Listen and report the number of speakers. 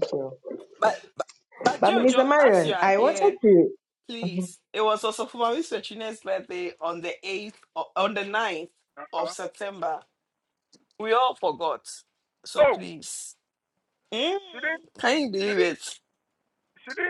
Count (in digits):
3